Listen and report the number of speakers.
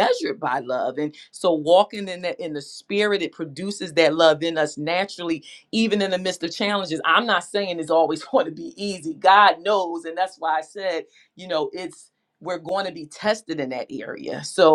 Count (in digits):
1